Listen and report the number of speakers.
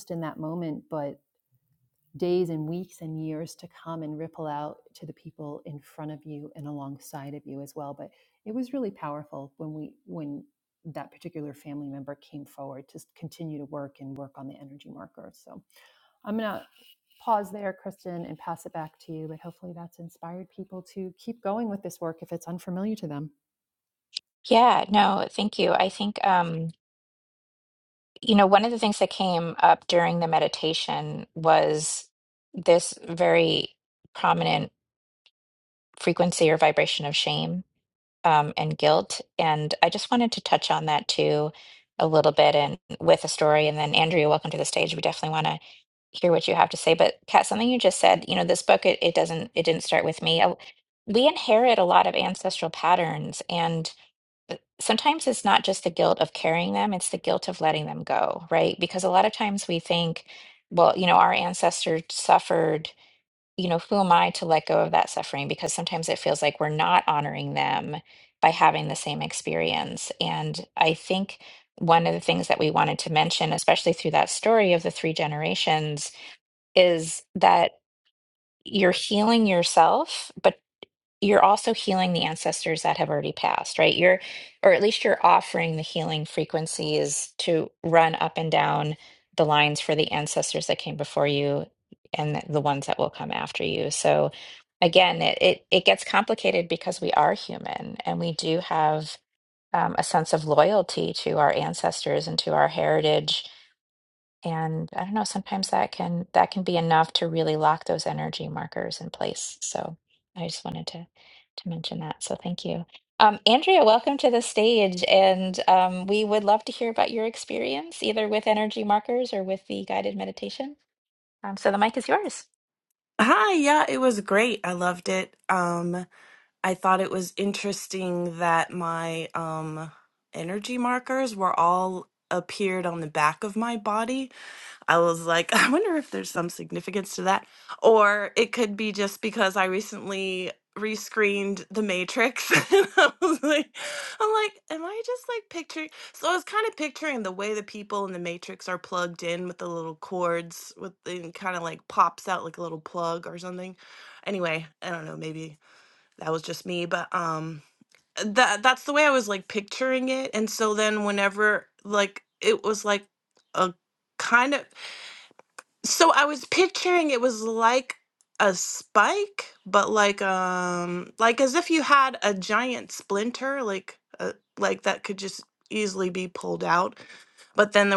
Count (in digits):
3